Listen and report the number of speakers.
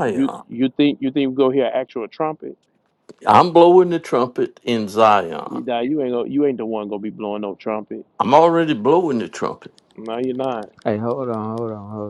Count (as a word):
three